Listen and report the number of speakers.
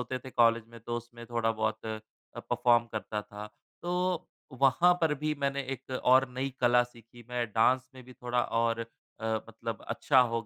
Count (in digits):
1